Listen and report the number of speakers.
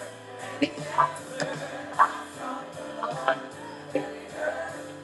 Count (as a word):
zero